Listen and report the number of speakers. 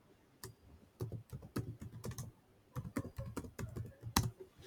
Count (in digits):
0